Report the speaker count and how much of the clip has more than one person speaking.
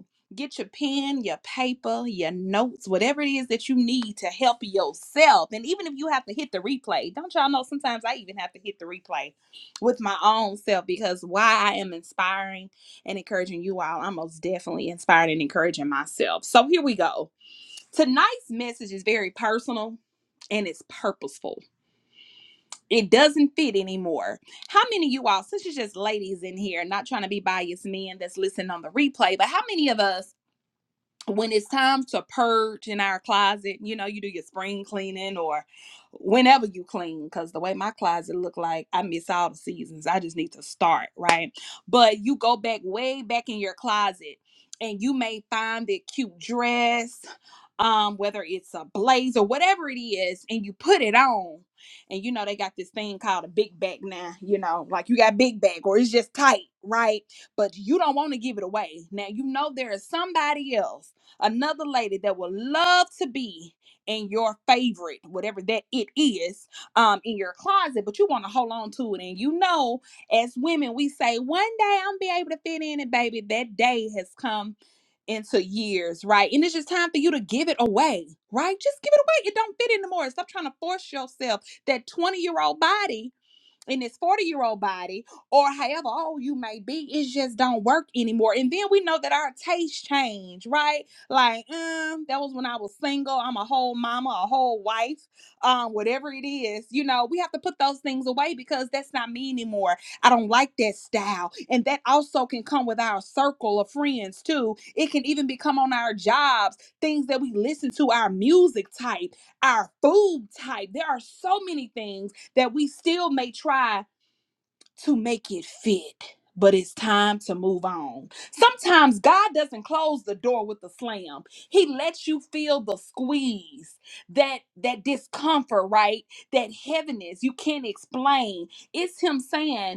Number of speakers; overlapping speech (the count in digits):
1, no overlap